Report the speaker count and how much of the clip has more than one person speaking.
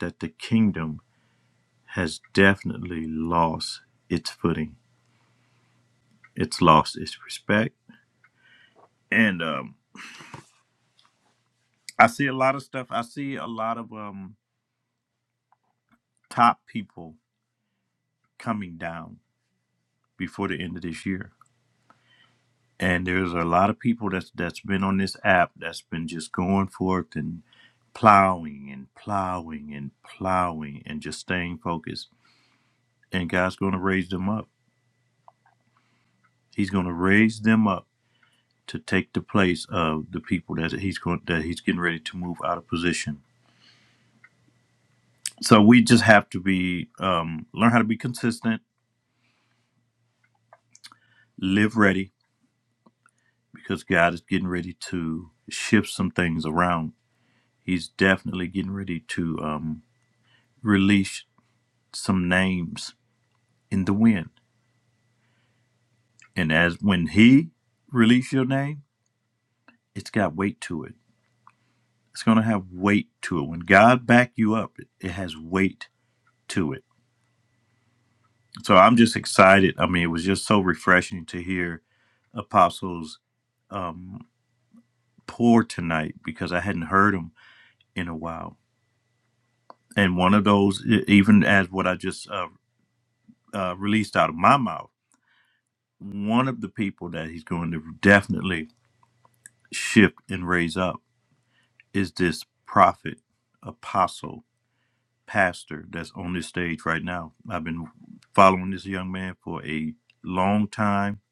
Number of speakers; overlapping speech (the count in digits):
1, no overlap